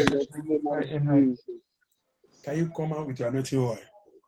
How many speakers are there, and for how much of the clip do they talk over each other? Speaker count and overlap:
two, about 3%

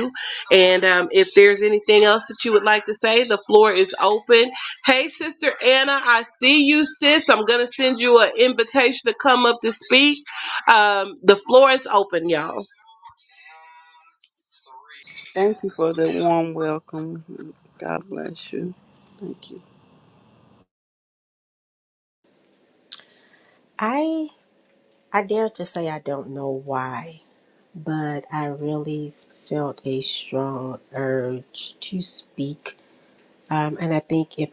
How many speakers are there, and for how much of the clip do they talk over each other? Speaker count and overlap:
three, no overlap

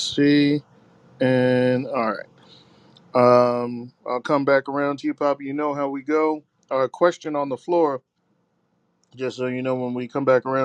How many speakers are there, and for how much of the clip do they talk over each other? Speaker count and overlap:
one, no overlap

